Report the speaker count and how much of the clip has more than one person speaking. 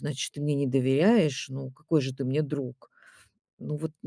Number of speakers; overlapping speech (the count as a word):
one, no overlap